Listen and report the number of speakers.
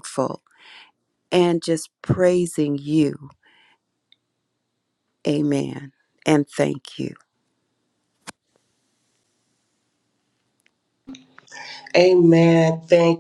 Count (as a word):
two